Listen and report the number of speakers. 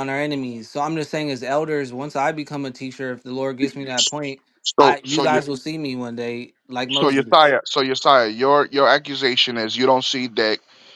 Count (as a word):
two